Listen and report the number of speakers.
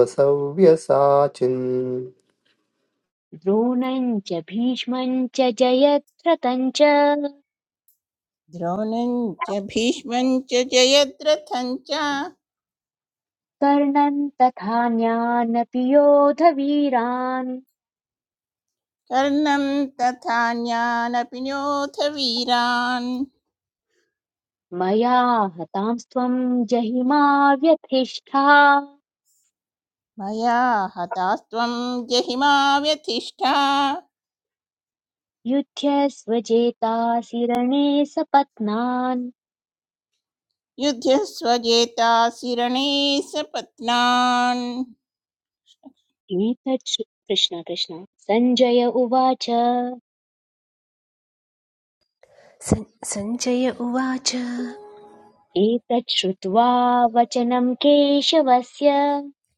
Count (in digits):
4